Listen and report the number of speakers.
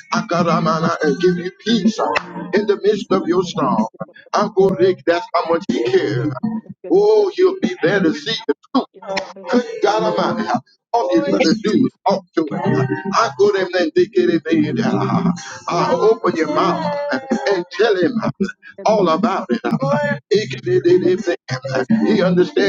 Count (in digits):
1